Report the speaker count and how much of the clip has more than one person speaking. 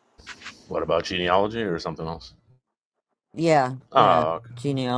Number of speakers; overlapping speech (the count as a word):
two, about 7%